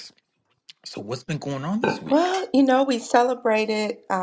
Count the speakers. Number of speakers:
two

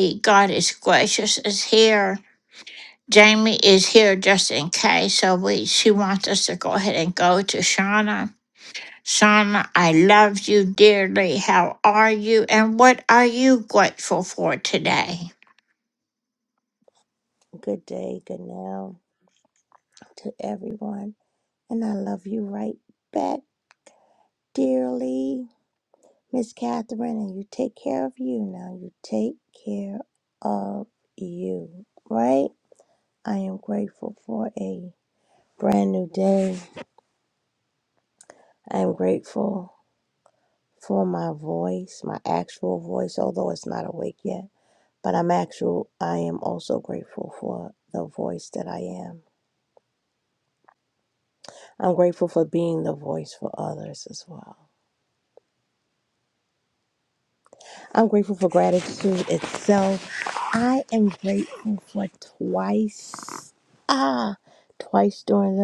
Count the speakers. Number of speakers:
two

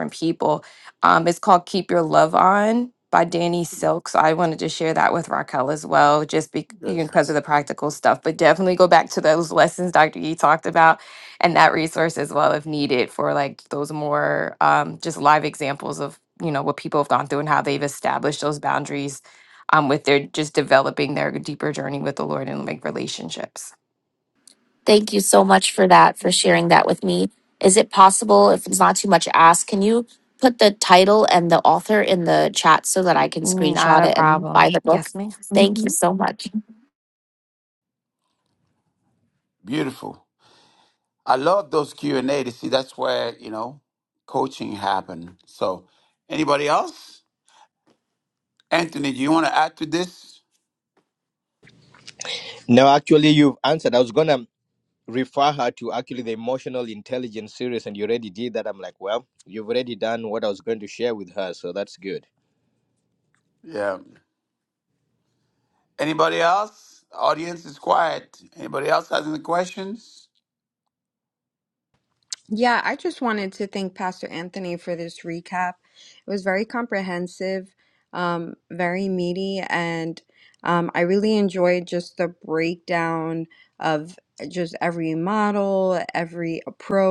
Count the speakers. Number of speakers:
five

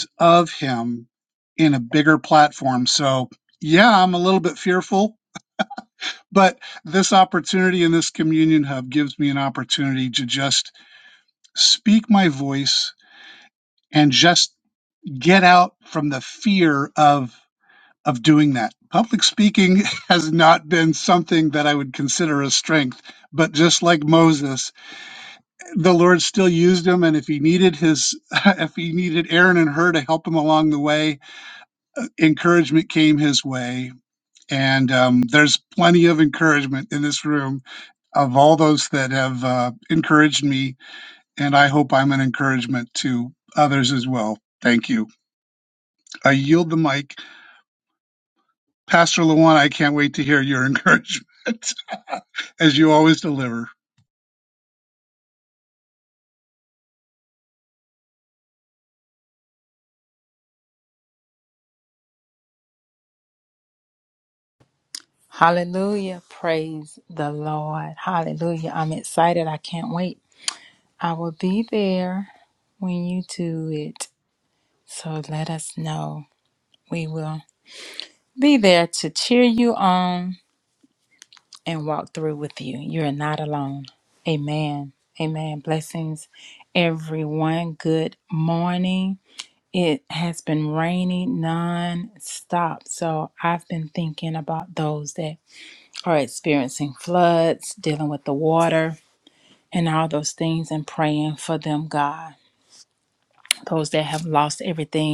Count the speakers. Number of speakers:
two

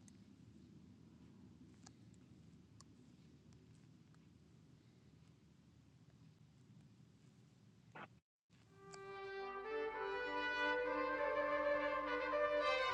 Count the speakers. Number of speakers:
zero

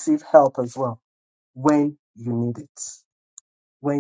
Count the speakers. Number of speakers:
one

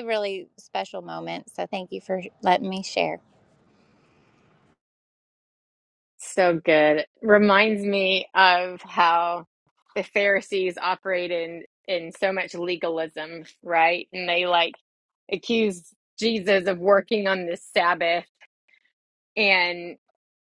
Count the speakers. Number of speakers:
two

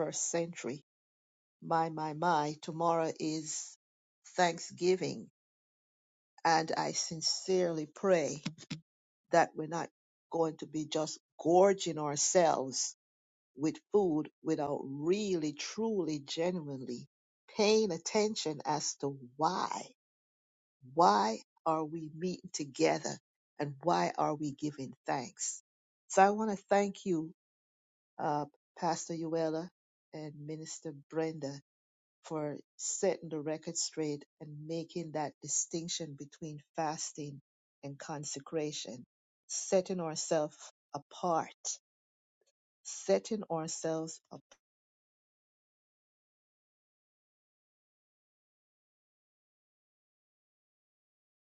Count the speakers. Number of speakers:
one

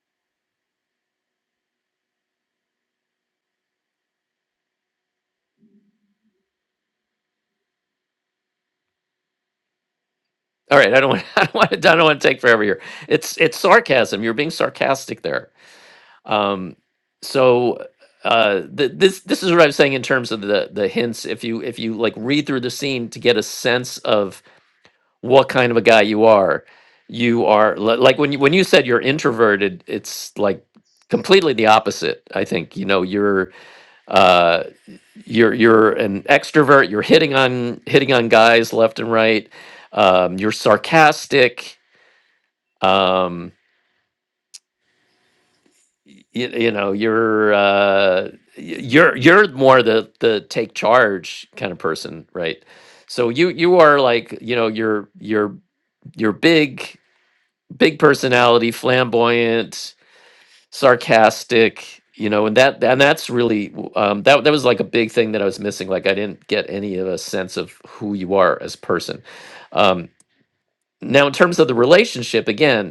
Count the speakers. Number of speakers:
one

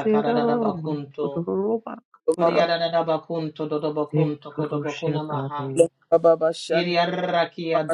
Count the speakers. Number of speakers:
three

